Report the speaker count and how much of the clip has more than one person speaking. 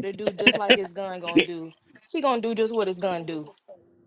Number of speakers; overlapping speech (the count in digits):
1, no overlap